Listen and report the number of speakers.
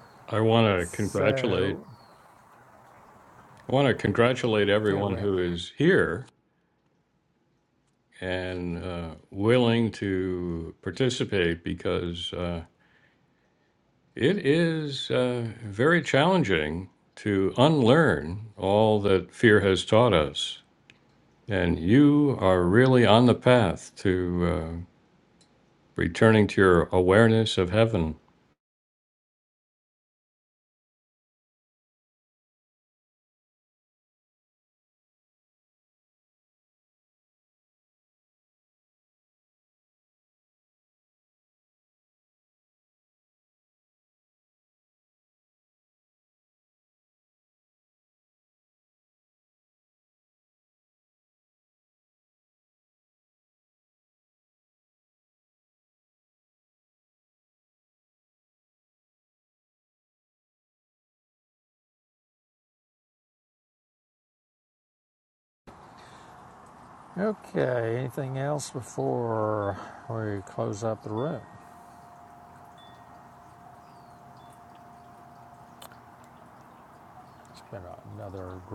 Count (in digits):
2